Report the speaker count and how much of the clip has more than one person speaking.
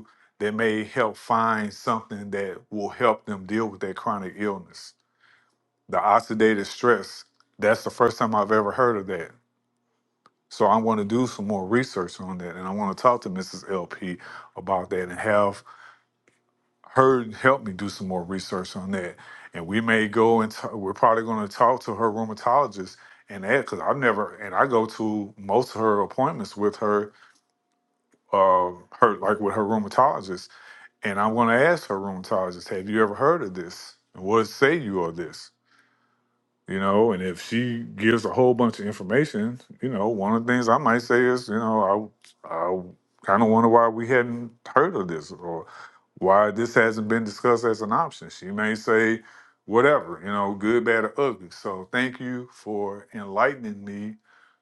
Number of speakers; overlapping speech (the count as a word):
one, no overlap